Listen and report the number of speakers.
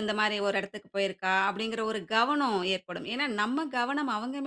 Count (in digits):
1